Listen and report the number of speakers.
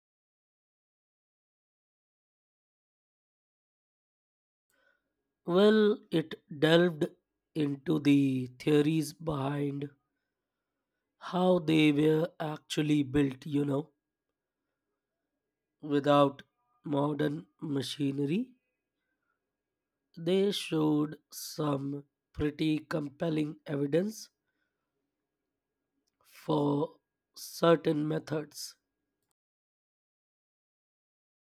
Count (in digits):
1